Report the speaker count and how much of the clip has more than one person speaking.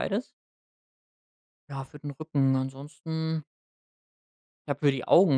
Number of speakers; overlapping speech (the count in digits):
1, no overlap